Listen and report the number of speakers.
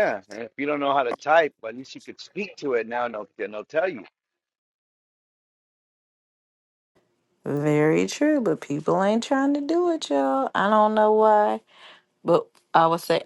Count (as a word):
two